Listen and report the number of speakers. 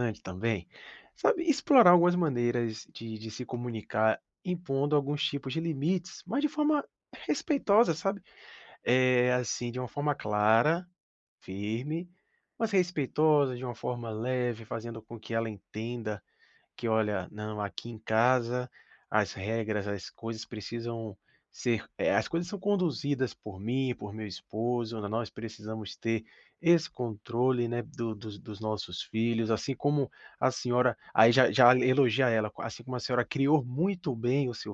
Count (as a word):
one